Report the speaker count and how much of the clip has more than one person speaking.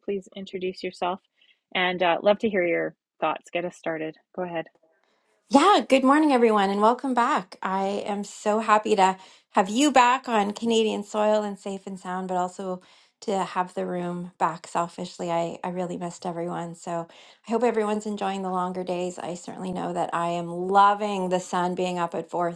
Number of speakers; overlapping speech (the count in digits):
2, no overlap